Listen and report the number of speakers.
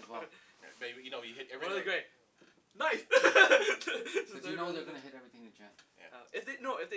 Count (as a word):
three